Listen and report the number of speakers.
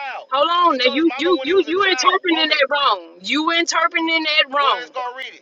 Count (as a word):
two